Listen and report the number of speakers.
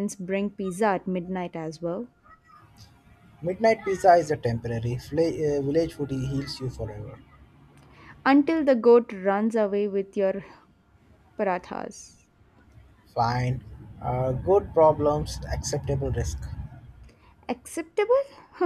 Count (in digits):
2